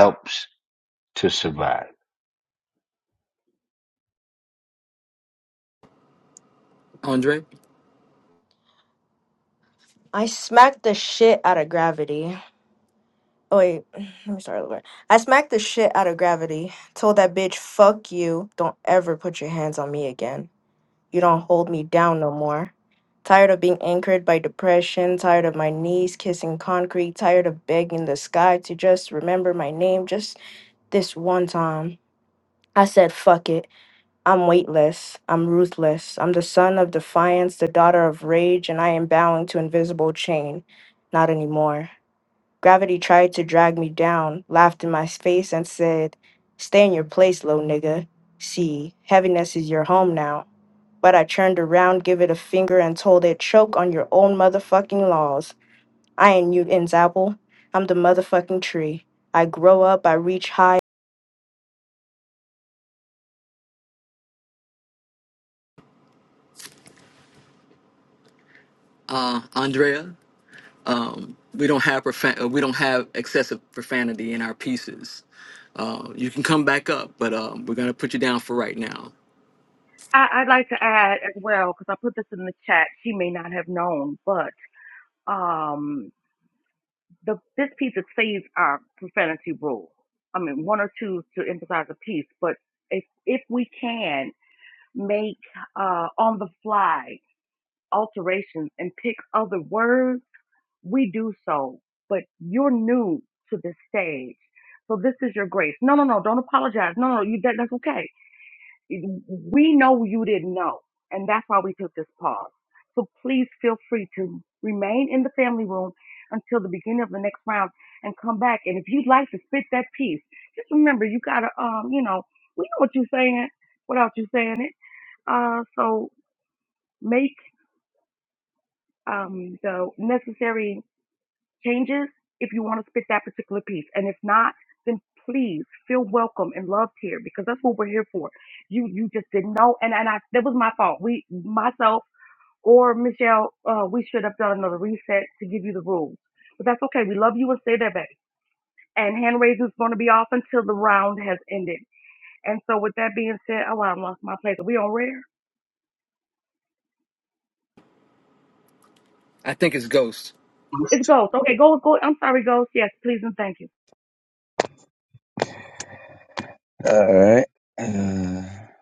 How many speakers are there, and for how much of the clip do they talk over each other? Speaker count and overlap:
five, no overlap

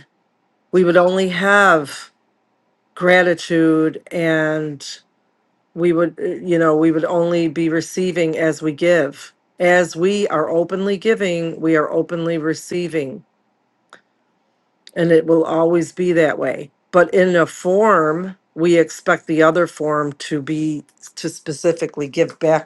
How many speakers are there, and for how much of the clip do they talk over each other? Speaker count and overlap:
one, no overlap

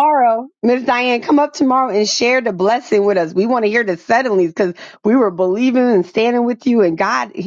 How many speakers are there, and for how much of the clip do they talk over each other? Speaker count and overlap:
one, no overlap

